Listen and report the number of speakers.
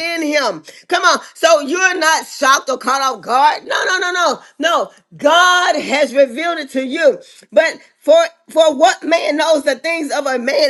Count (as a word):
one